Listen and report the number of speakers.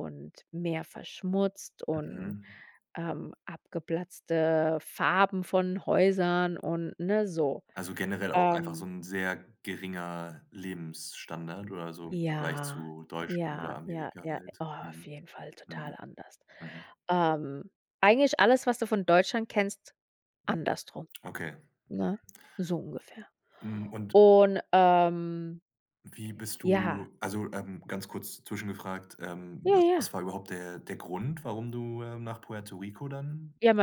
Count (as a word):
two